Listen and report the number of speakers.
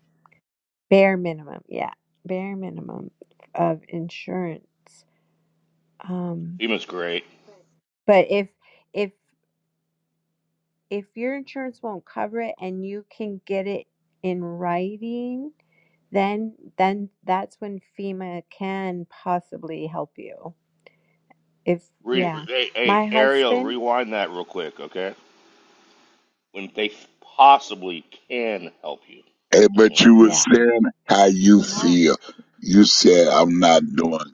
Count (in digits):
3